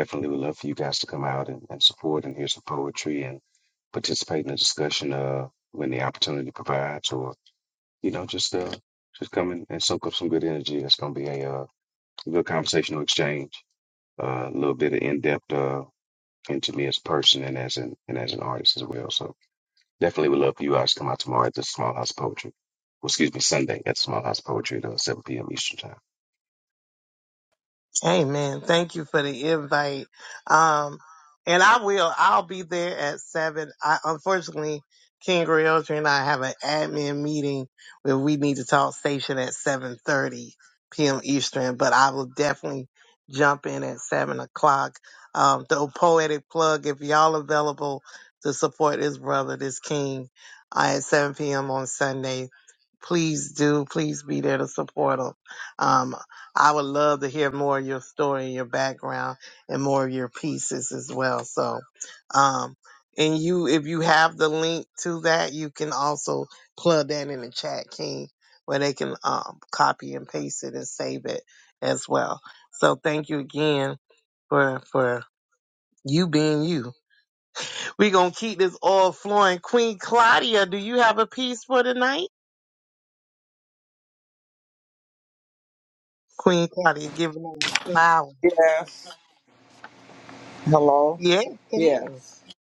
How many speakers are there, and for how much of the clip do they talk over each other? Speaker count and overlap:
3, under 1%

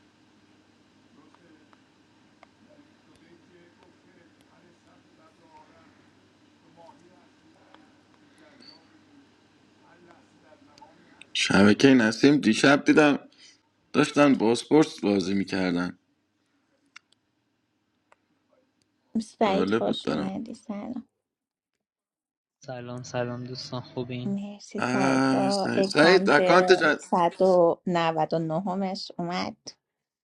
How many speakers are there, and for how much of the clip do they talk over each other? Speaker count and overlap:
3, about 8%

